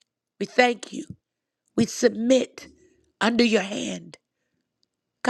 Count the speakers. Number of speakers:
1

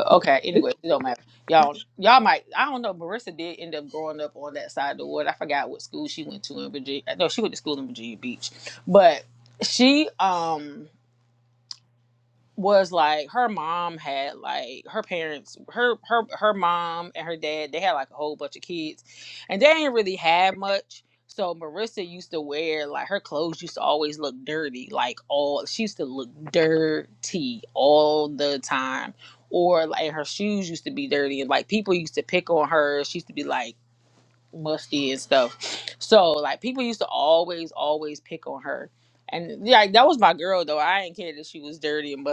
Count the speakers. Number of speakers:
1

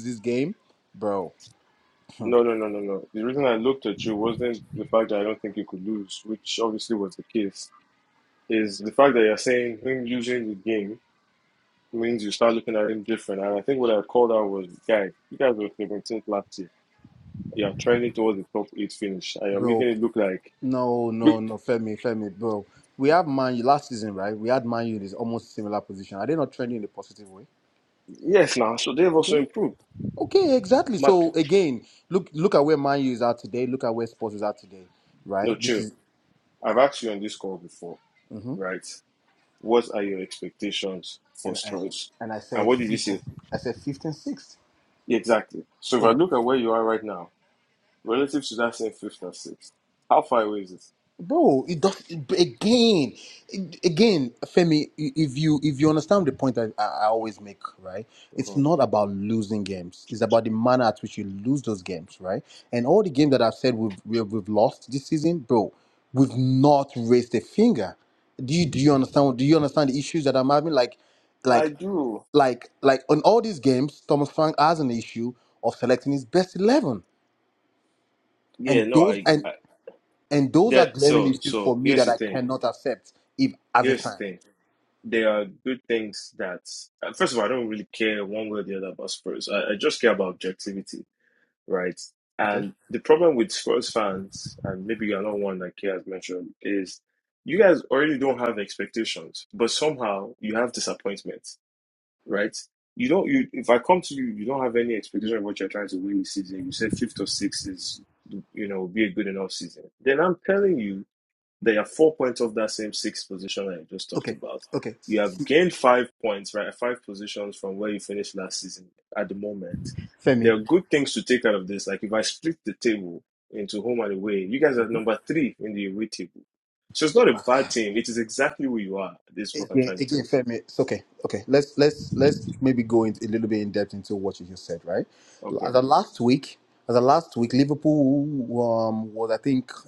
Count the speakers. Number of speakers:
2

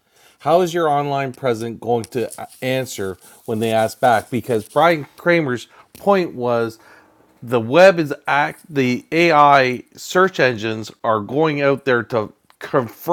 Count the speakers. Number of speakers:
1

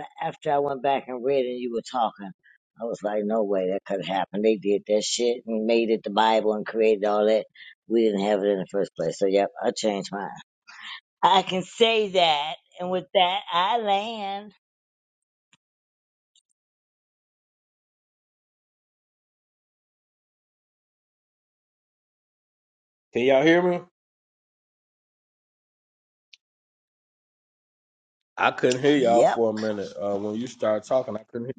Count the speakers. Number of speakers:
2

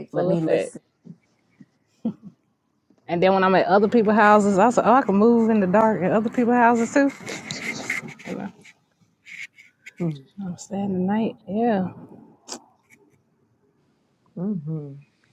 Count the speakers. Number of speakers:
2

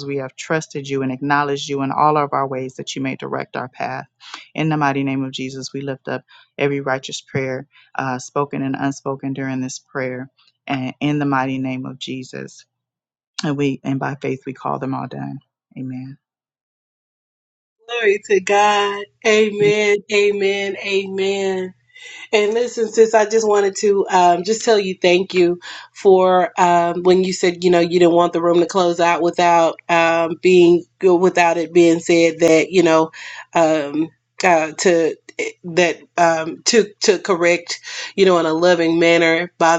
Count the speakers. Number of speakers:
2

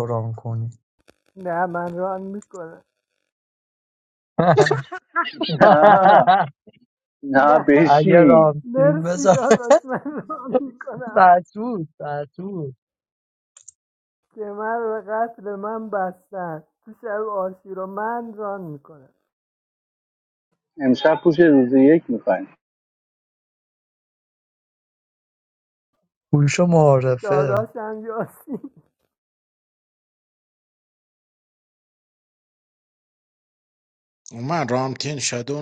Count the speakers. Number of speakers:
4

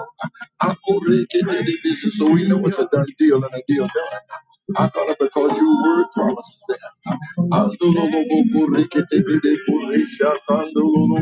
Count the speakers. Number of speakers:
1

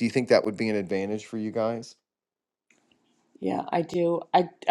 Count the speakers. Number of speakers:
2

